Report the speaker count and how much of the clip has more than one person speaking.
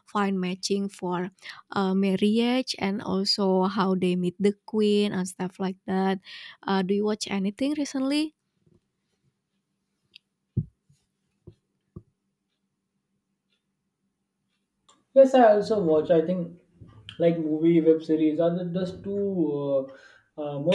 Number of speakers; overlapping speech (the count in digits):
2, no overlap